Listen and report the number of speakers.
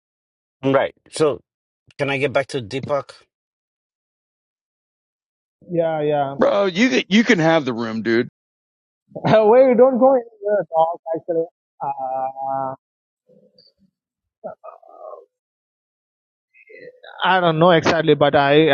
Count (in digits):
3